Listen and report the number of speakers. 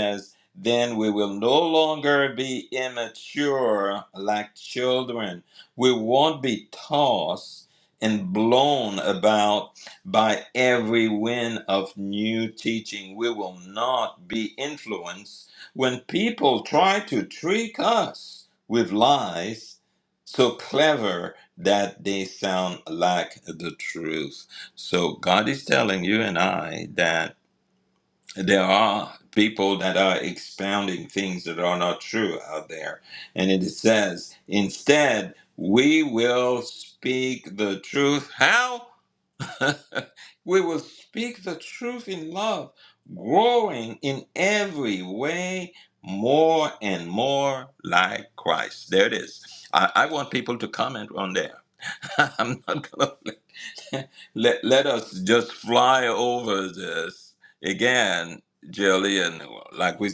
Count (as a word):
one